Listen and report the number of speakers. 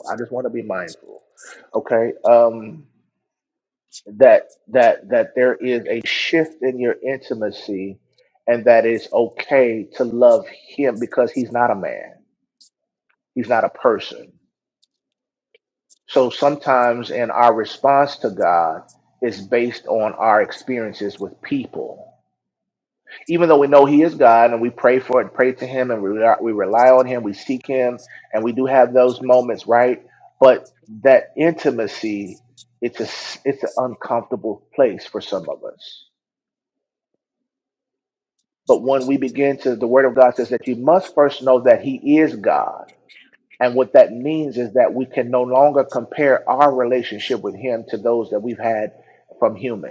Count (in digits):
1